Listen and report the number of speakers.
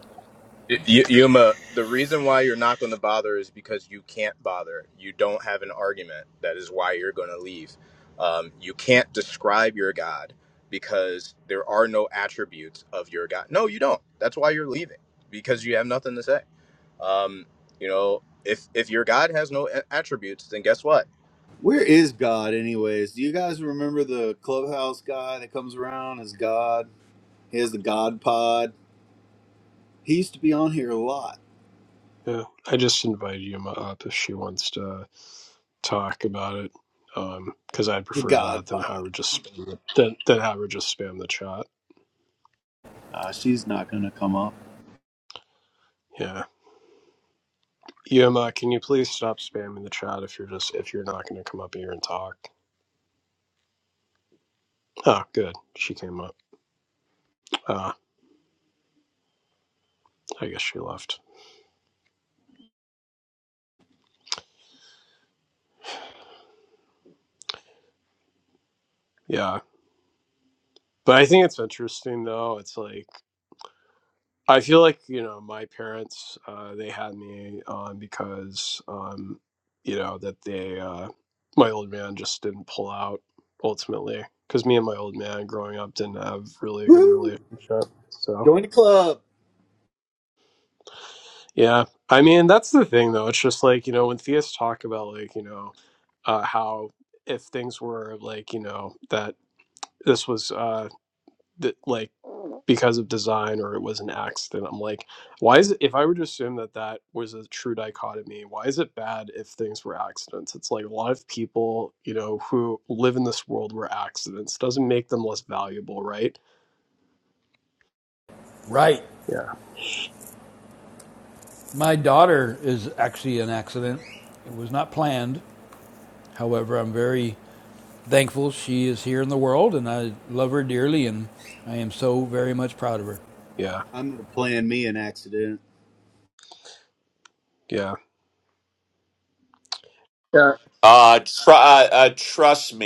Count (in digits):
5